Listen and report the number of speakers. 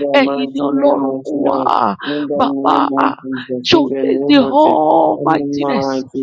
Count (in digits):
2